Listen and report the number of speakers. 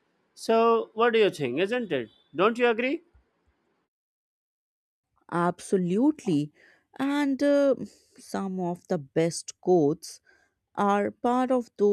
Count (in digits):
2